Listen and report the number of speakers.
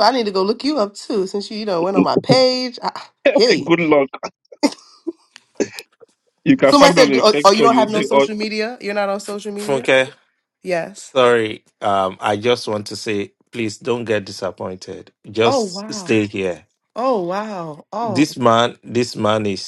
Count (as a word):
three